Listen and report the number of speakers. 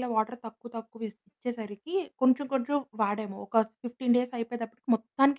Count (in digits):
1